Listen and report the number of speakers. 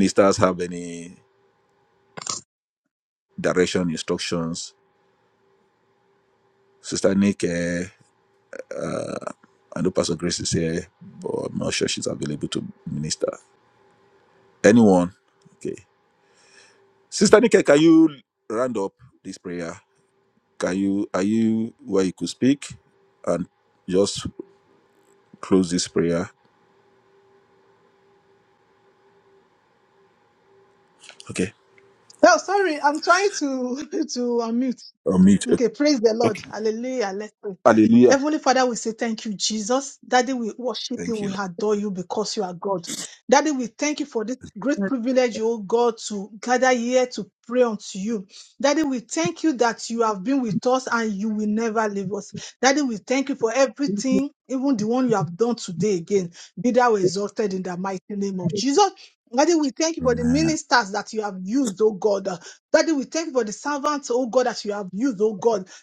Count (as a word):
two